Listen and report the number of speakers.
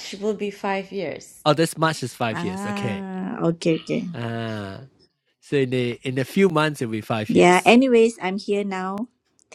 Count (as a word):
three